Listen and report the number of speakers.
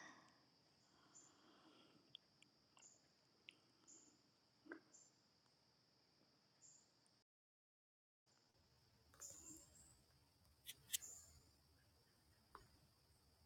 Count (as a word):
zero